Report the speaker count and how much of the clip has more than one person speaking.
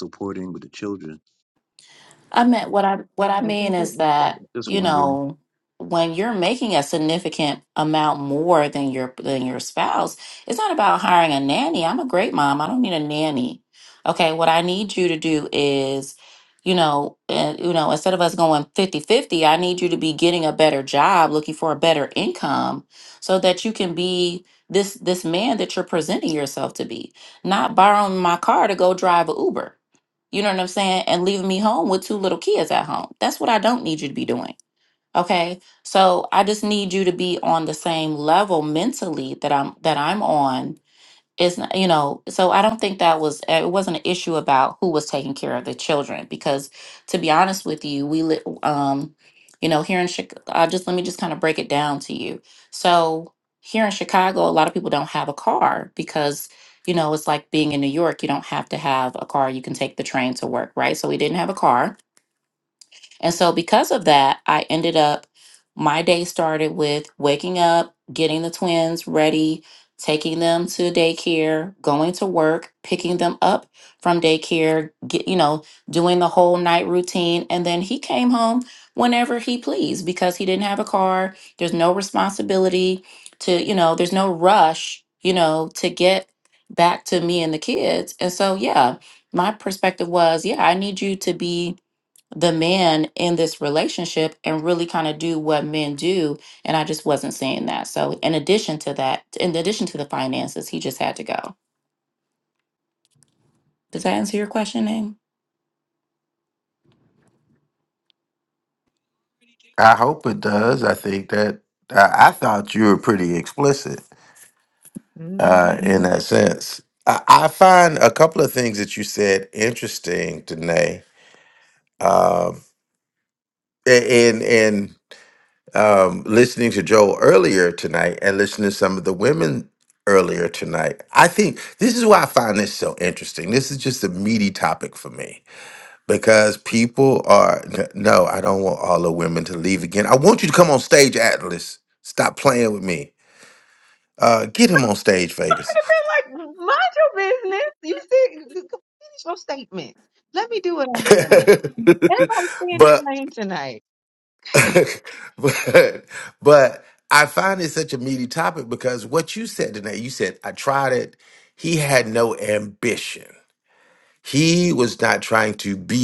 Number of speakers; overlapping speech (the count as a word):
four, about 1%